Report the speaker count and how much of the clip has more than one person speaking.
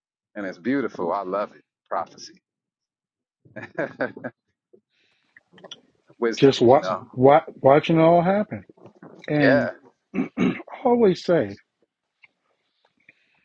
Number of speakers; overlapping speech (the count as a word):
two, about 5%